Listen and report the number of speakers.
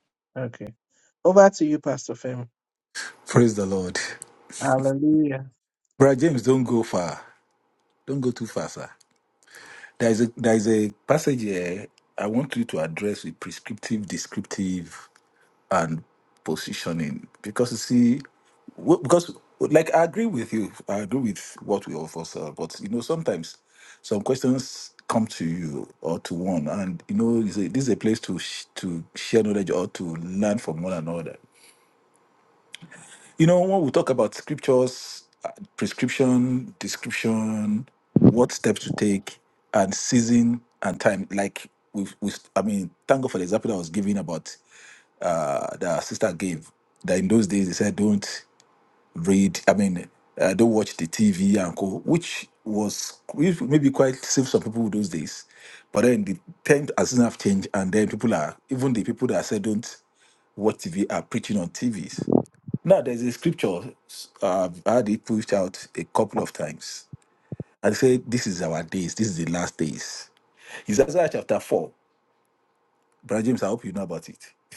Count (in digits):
2